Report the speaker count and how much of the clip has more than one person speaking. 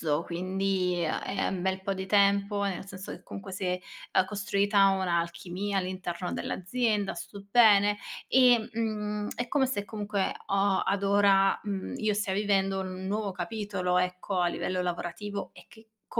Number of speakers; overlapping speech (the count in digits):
1, no overlap